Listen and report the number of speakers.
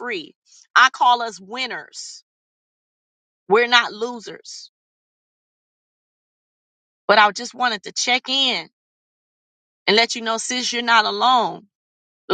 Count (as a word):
one